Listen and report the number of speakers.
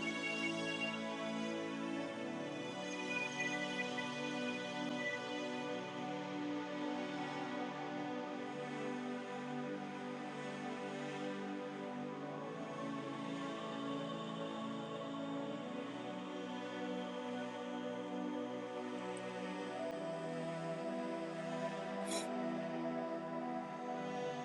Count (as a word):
zero